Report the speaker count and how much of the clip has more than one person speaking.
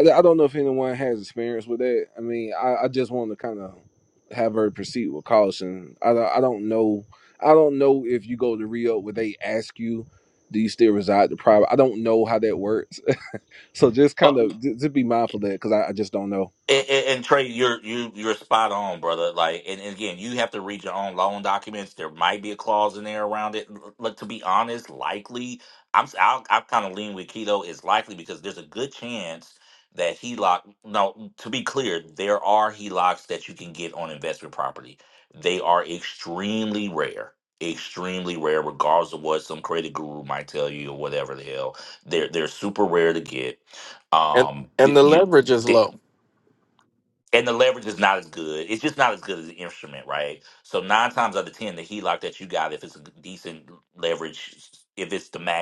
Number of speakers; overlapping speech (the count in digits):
3, about 1%